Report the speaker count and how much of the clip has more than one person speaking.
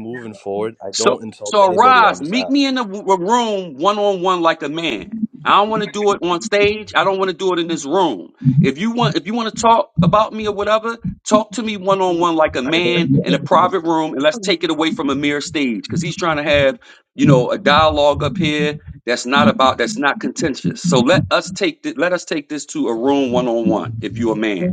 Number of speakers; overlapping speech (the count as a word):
two, about 5%